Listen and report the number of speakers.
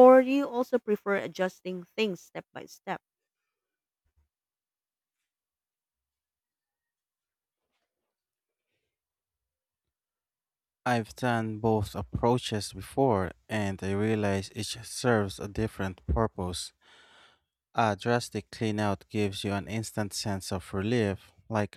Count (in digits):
2